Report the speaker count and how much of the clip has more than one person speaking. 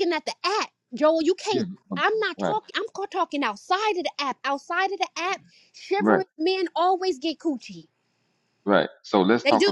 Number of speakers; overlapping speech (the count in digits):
2, about 9%